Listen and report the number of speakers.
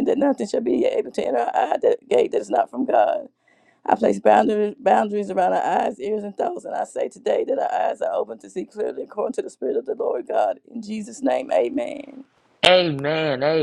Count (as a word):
two